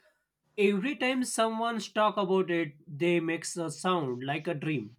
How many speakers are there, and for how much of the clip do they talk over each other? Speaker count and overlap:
1, no overlap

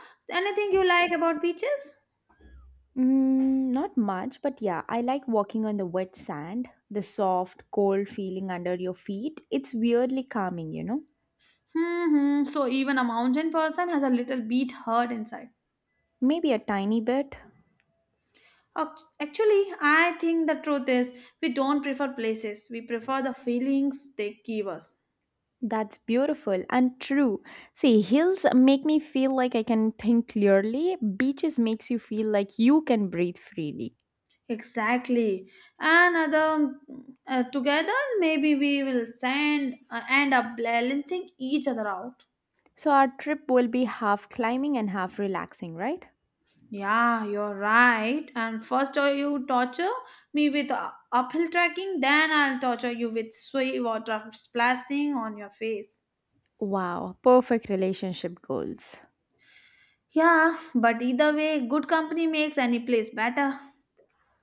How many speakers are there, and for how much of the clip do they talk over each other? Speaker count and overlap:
2, no overlap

